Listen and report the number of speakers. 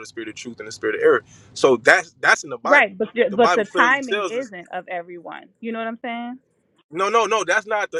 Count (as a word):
two